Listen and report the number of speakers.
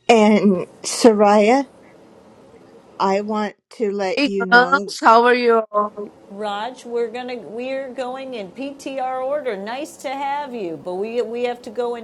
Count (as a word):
three